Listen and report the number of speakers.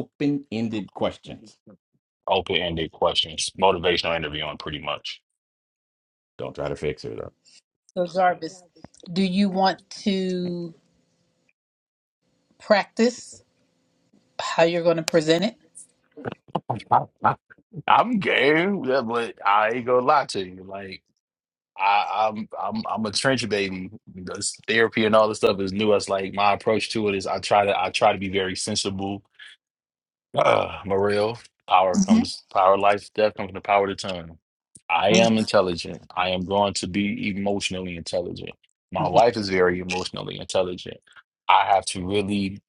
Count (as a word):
three